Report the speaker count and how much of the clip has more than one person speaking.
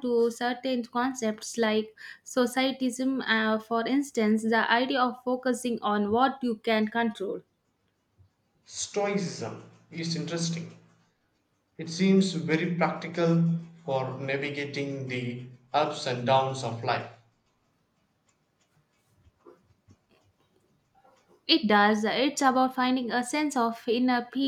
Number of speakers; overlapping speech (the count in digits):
2, no overlap